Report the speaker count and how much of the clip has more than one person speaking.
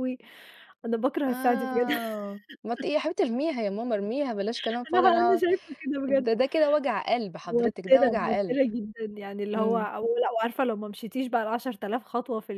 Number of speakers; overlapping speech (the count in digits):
2, about 21%